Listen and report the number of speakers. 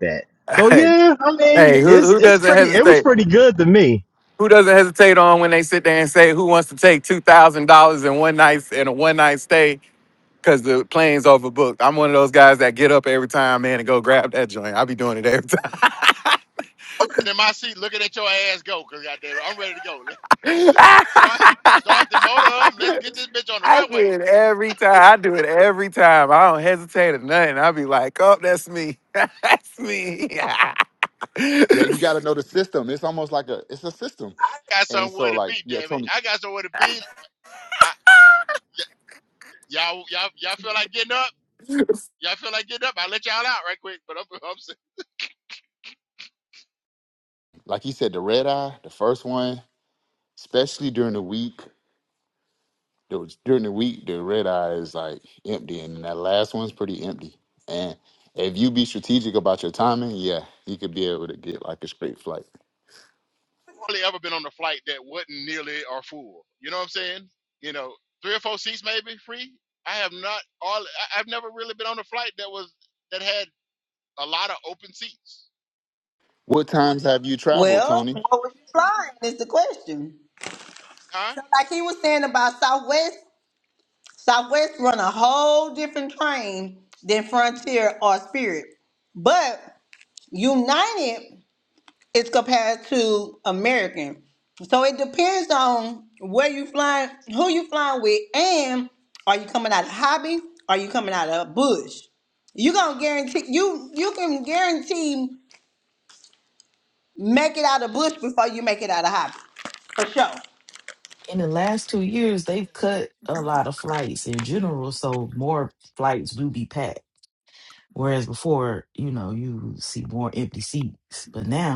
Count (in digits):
6